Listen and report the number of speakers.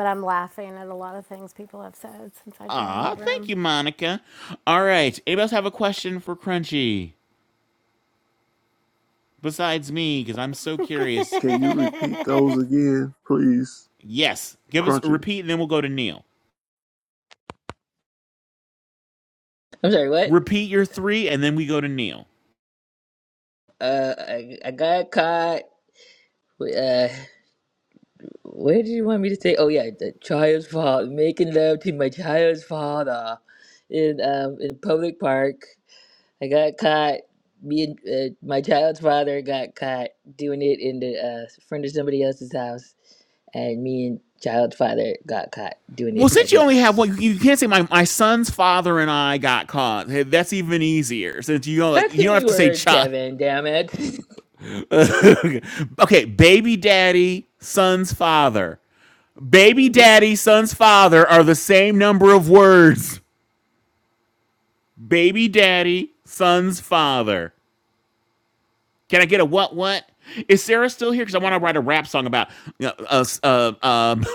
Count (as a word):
four